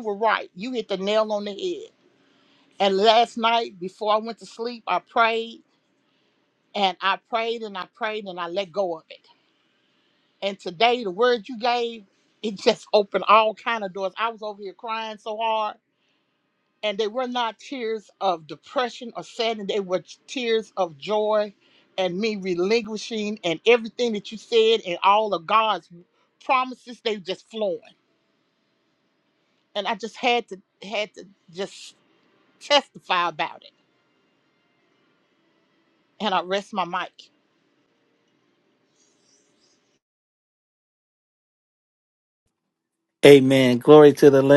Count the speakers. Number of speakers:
two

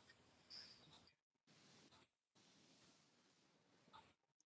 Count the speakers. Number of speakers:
zero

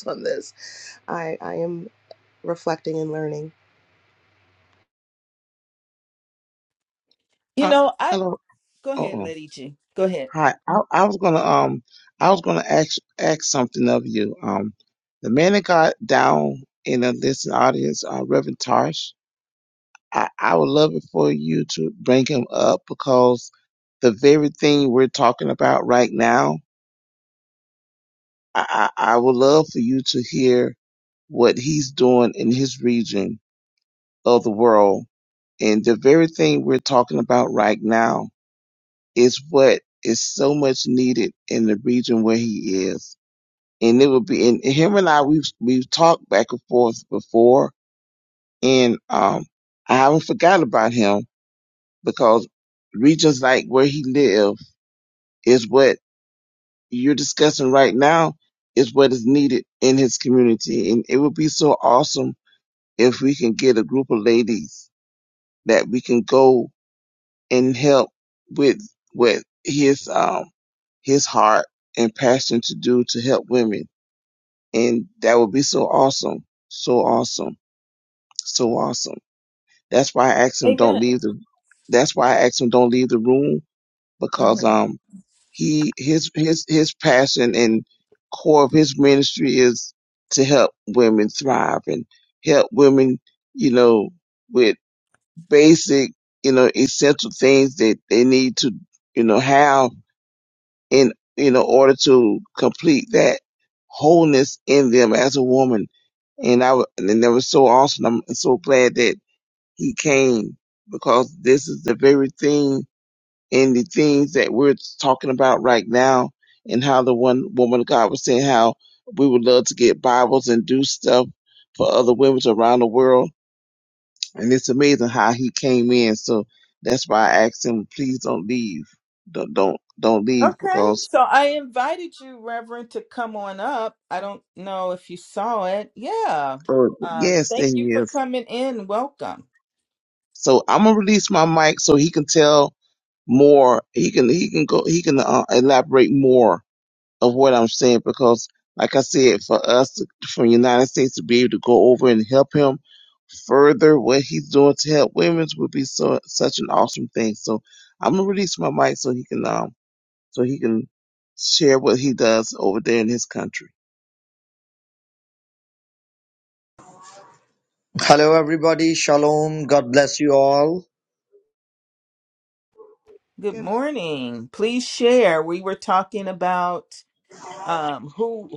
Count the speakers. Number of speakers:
four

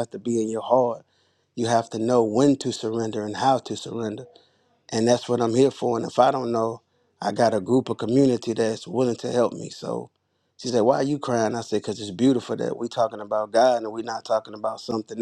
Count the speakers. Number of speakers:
one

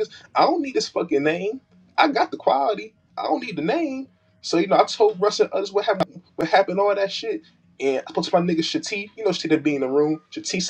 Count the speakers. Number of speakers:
one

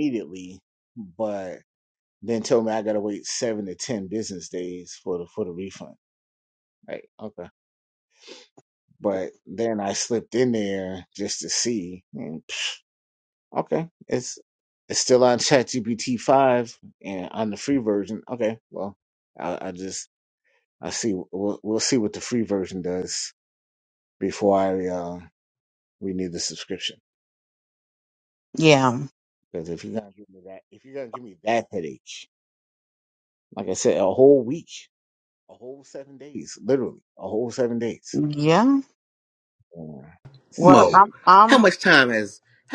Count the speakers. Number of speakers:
three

